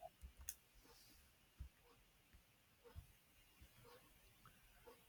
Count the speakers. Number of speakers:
0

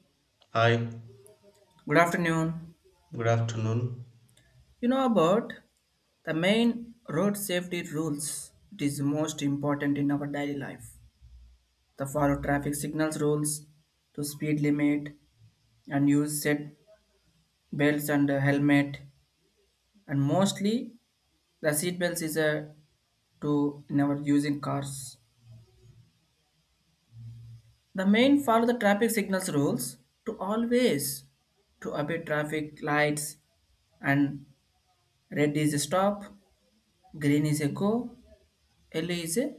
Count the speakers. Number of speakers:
2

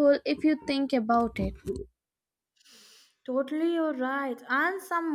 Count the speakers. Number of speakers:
2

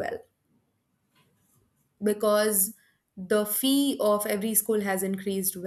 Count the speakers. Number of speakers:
1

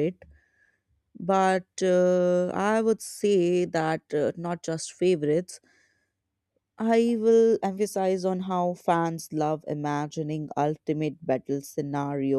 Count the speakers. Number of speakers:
1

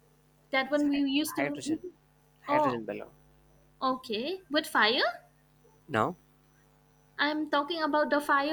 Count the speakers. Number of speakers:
2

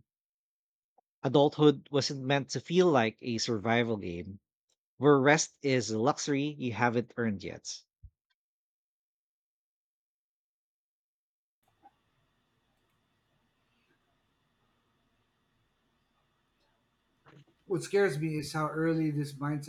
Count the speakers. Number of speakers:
2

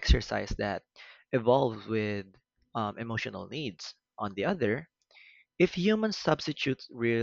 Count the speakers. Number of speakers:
1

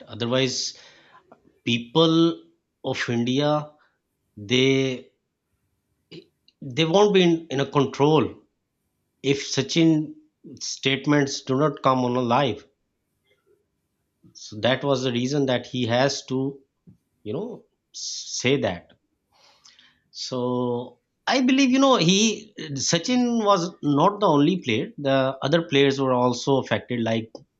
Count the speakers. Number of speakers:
1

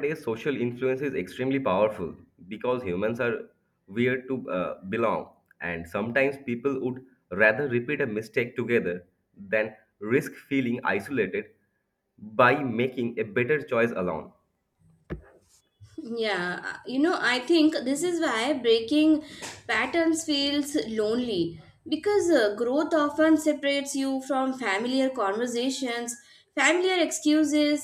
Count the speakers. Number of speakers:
2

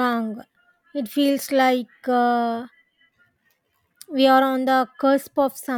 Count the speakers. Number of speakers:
1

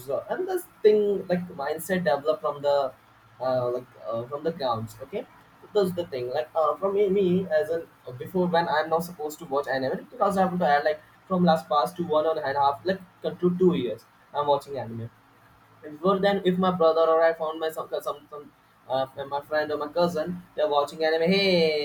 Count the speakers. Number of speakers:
1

